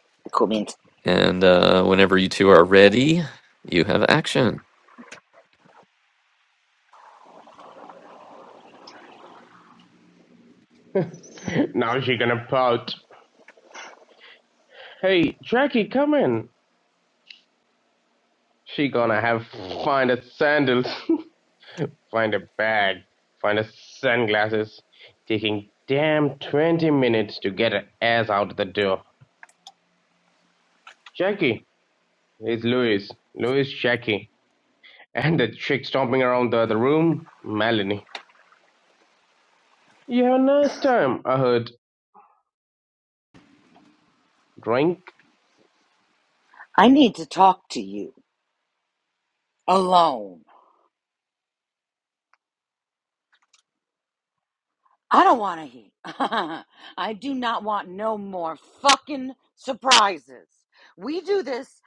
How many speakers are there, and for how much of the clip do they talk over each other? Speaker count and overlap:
3, no overlap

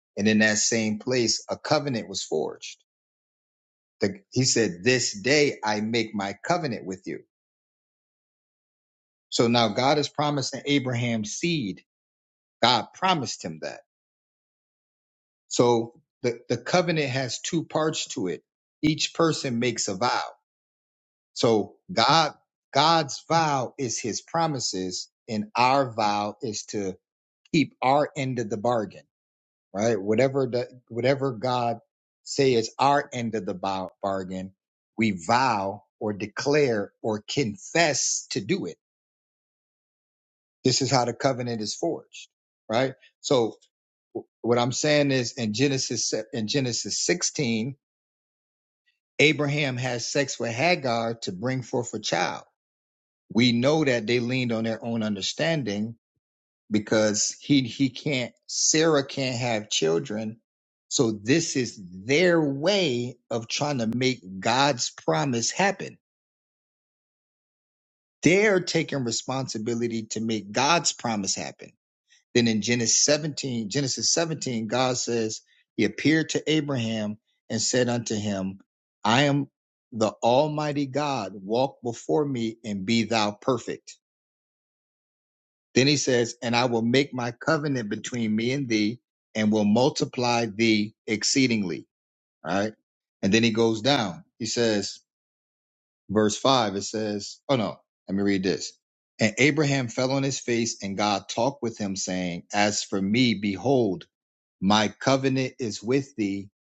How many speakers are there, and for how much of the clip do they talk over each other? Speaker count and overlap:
1, no overlap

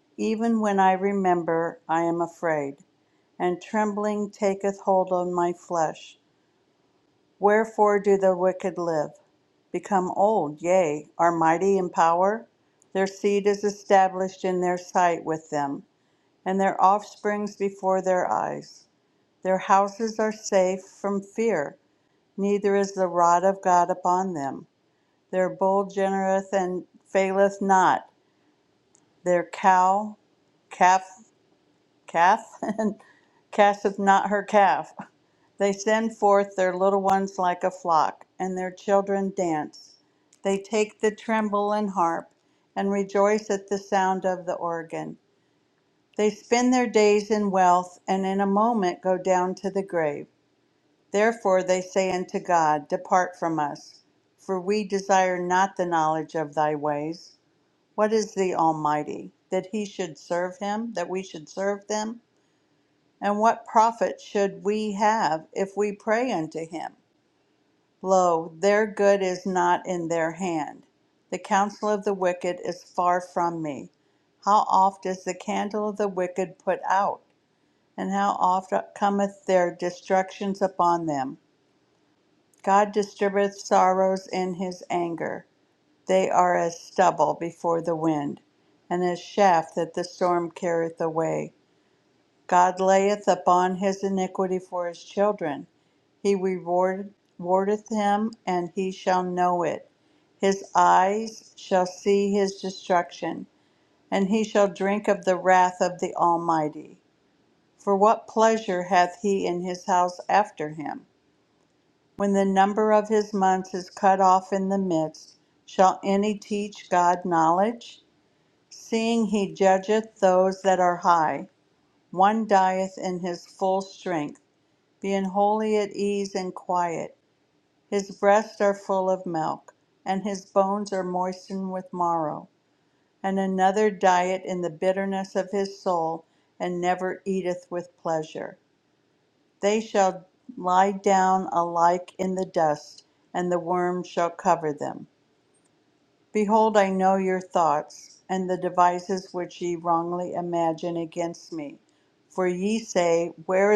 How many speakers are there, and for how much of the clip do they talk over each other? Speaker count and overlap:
1, no overlap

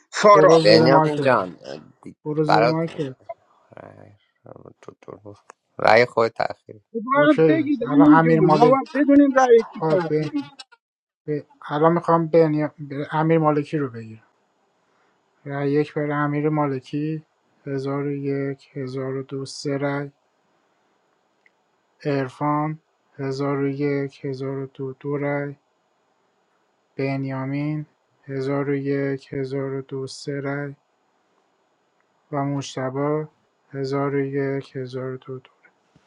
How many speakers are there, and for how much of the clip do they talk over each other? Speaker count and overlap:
3, about 10%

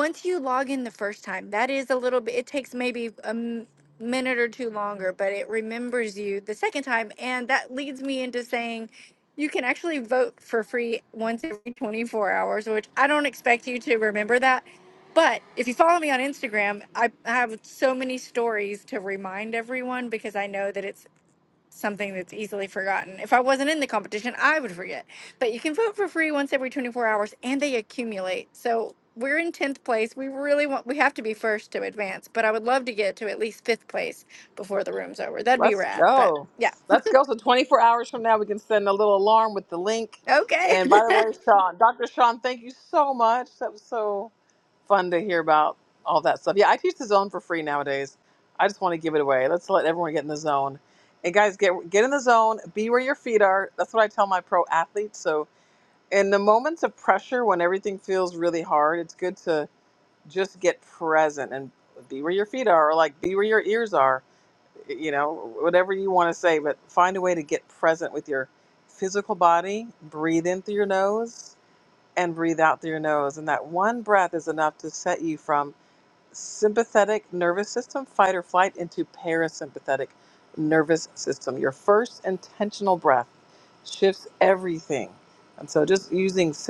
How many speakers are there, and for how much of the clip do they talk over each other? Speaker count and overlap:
2, about 1%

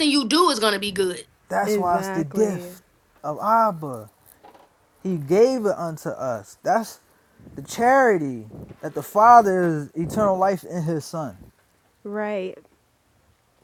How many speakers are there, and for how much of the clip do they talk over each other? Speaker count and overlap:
3, about 7%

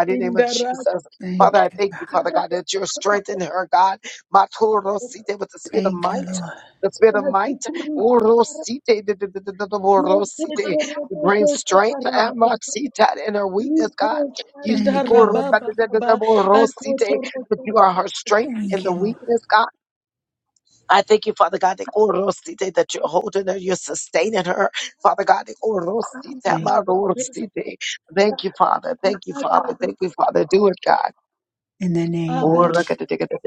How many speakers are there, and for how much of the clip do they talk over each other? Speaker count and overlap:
3, about 30%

